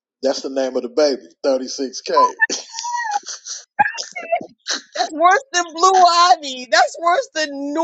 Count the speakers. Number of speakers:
2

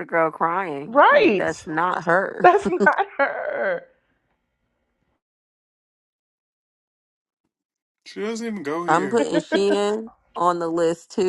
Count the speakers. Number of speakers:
3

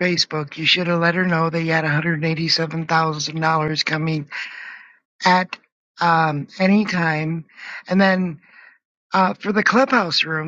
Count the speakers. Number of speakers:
1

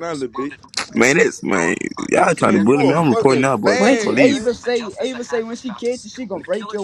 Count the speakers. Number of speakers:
3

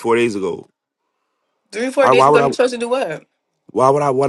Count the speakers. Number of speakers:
2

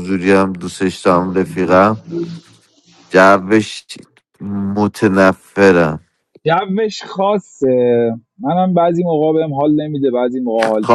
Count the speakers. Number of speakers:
2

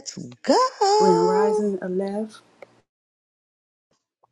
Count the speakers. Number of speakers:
2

